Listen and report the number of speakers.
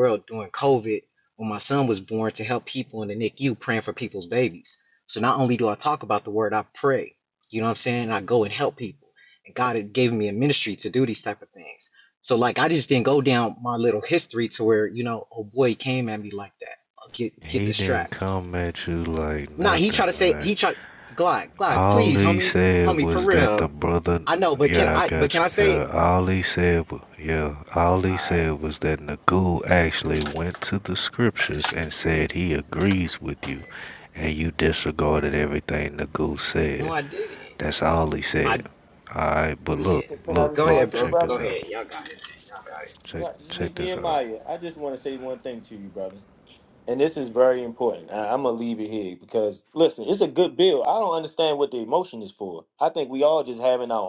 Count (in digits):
3